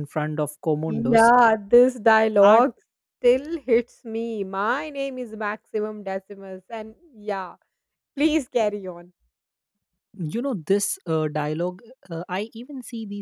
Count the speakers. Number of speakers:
two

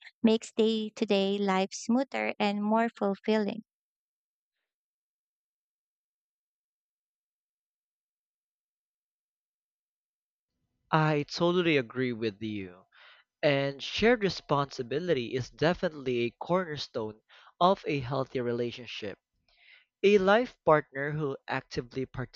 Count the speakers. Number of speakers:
two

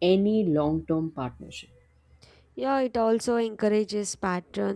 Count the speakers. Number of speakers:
two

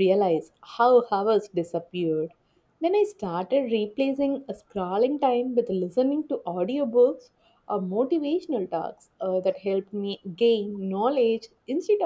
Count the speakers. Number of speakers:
one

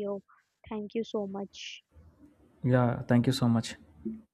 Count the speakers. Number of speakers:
two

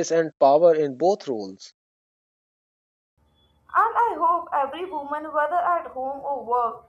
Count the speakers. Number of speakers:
two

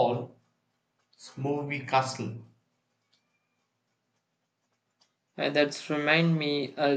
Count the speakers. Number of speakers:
two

